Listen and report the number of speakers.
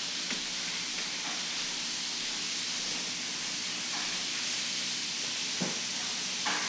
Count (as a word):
zero